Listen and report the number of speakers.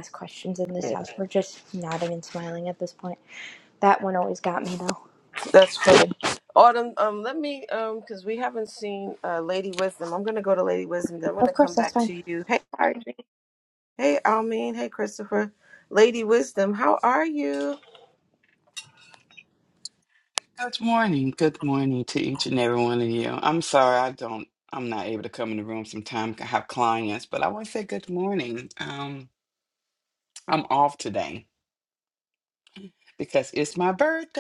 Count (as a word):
three